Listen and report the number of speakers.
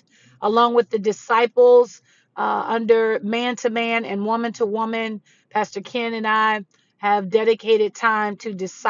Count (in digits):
1